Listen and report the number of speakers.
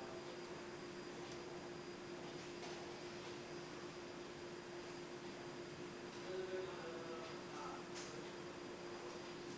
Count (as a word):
zero